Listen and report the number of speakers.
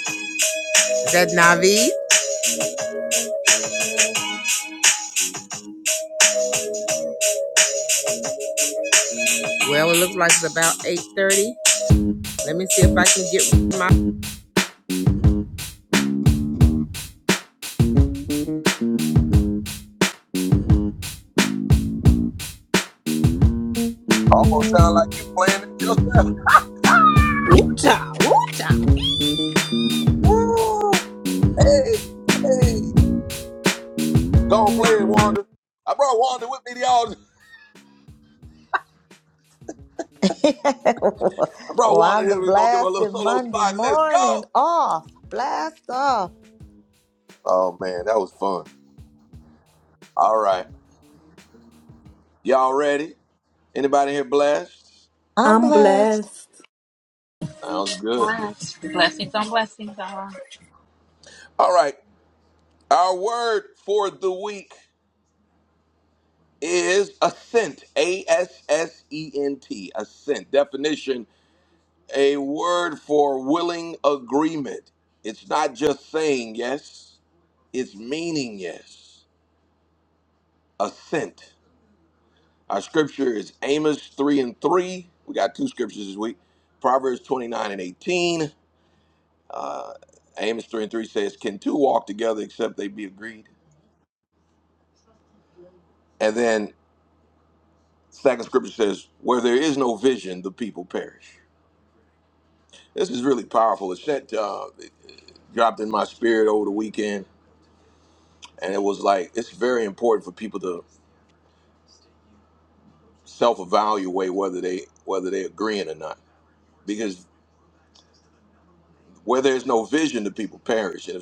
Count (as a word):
five